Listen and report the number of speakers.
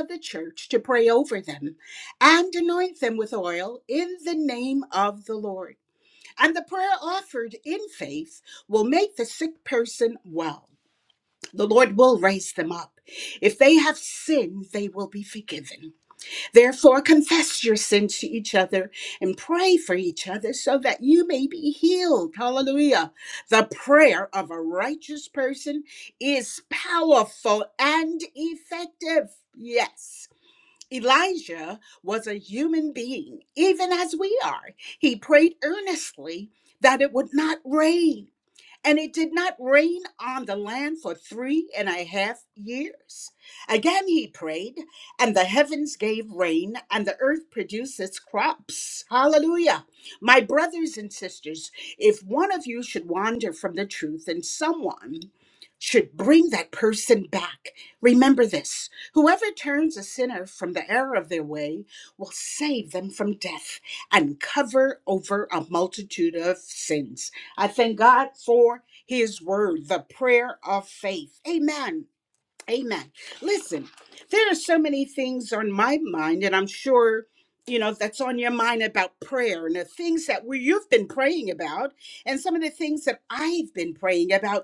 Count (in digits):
1